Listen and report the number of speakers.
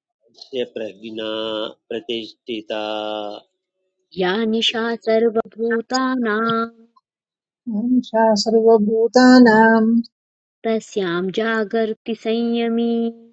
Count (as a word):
three